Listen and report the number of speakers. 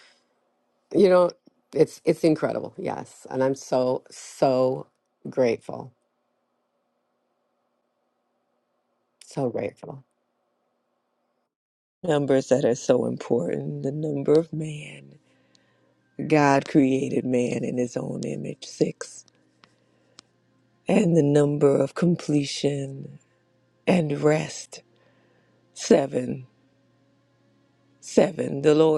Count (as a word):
two